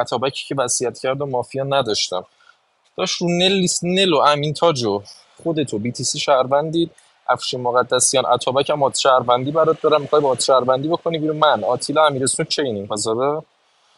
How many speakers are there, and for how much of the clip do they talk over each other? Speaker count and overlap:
one, no overlap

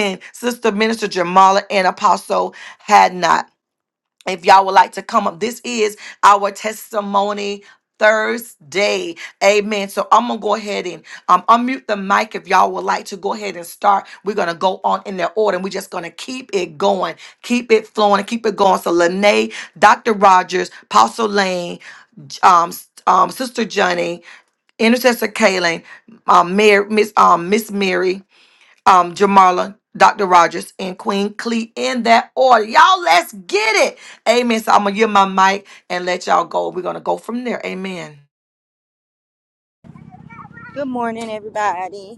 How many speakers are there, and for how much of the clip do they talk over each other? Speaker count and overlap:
two, no overlap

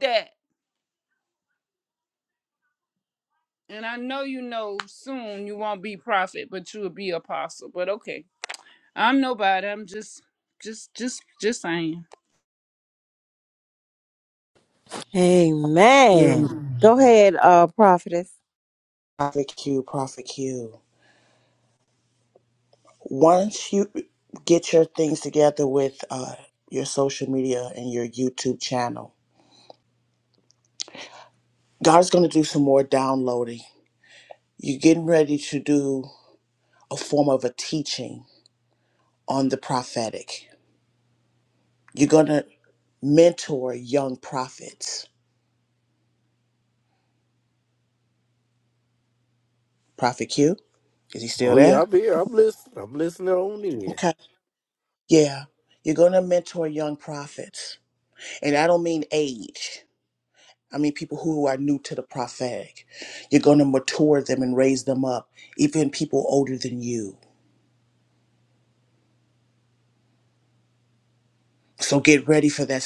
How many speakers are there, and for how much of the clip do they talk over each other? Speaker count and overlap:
four, about 1%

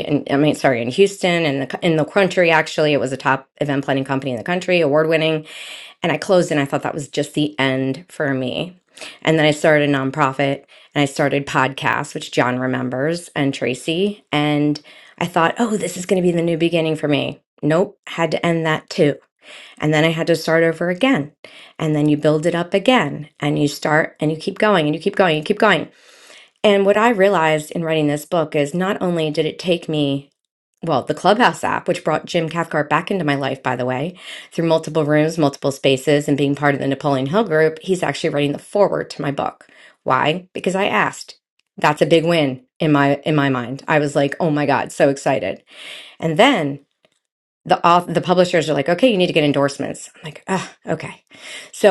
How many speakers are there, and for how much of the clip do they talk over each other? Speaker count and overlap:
one, no overlap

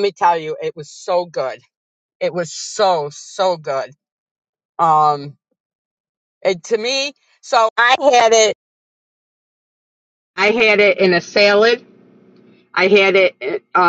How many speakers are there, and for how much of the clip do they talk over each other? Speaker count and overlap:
one, no overlap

